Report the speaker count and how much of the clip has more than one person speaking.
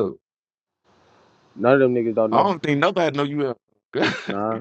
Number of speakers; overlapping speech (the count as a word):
two, about 4%